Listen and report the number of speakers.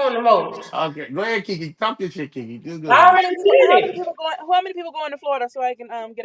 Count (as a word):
three